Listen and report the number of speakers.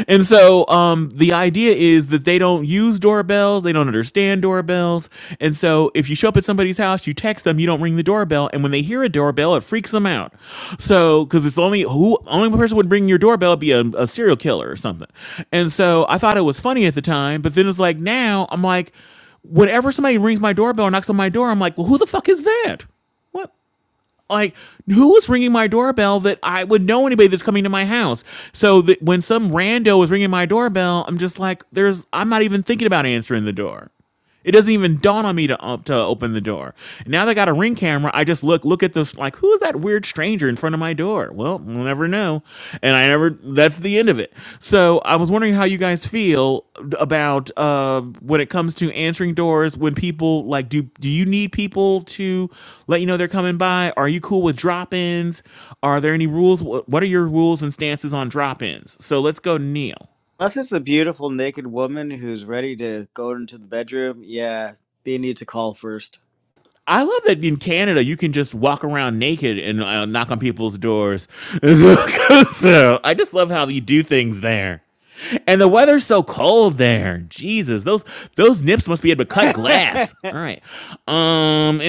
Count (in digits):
2